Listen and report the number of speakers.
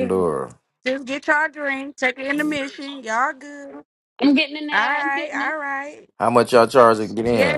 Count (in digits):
3